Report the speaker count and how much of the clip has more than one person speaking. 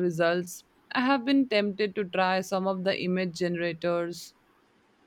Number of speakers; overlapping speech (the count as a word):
one, no overlap